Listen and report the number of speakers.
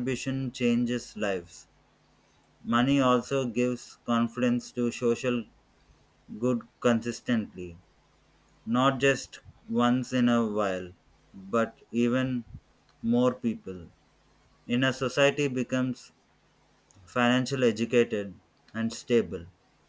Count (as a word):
one